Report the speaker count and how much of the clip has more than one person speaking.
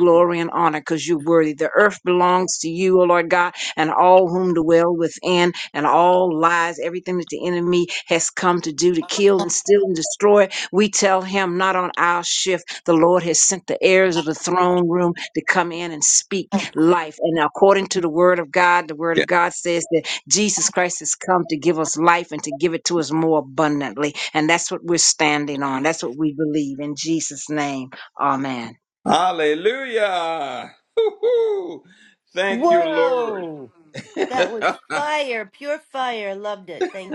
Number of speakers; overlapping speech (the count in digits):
3, about 3%